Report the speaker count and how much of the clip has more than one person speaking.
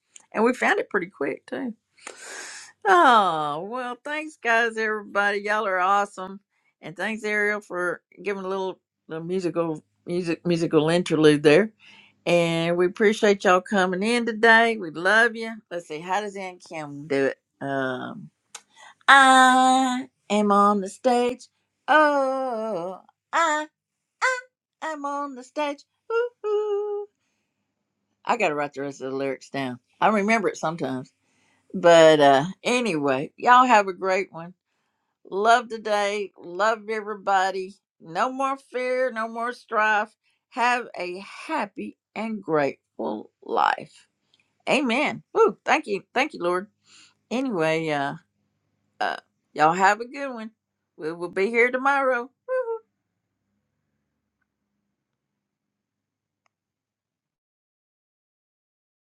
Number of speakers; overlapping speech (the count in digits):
1, no overlap